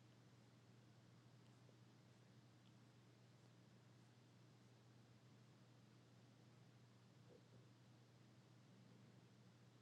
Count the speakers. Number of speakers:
0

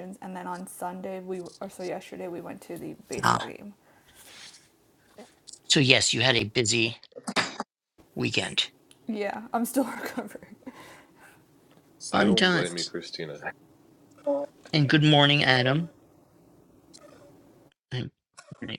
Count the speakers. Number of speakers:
3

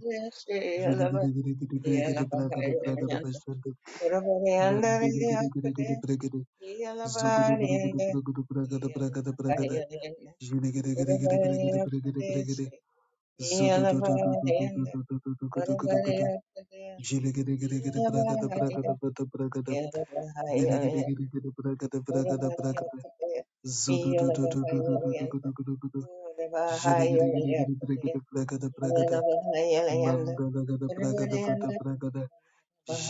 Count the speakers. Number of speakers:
2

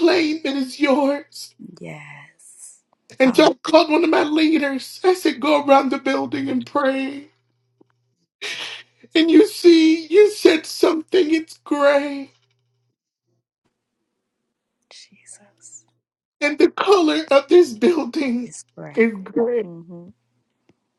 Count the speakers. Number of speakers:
2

